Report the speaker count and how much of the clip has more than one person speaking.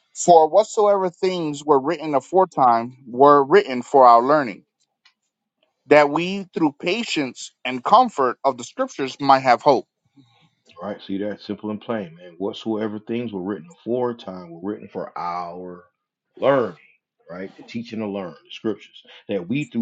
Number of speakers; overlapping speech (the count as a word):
two, no overlap